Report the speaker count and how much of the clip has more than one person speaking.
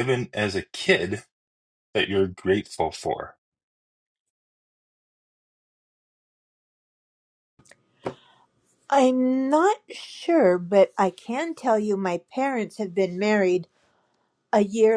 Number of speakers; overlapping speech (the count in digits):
2, no overlap